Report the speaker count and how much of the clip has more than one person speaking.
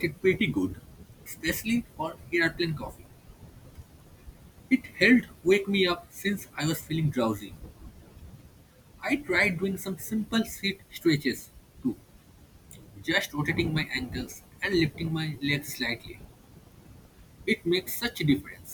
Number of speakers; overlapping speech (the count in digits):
1, no overlap